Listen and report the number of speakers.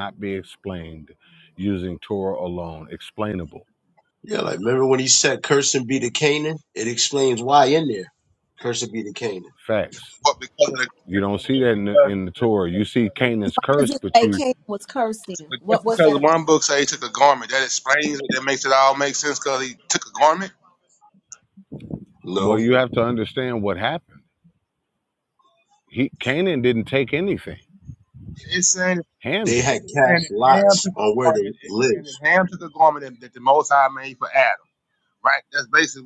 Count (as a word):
four